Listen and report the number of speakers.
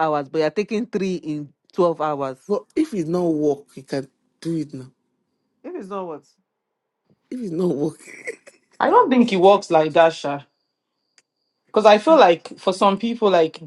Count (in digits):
3